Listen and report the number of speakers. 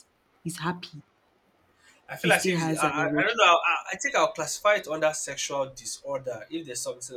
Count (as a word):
two